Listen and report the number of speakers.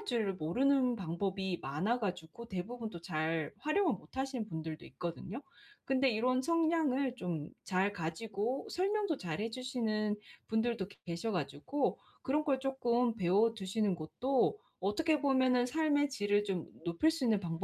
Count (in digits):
1